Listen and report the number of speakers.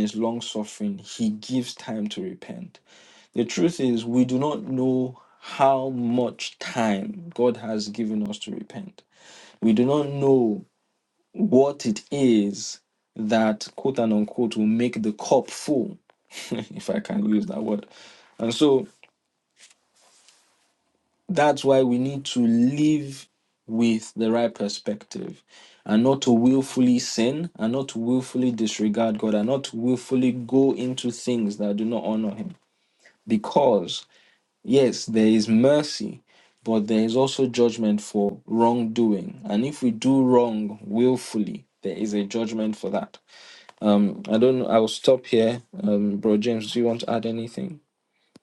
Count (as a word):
one